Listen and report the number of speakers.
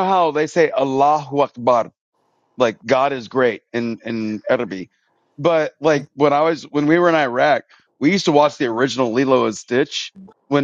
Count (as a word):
one